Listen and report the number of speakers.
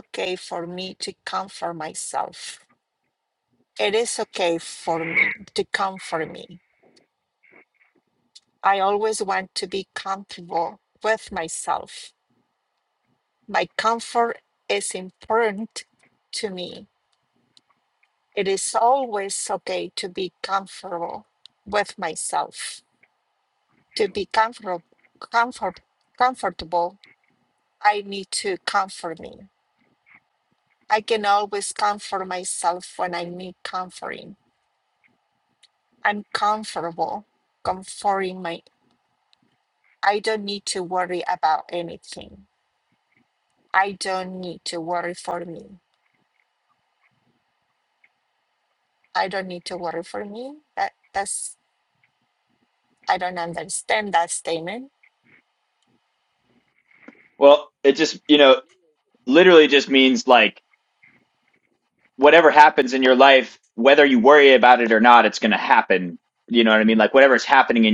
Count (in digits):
2